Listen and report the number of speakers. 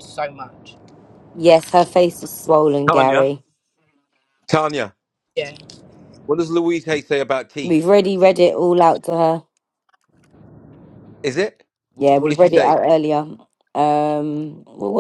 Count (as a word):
three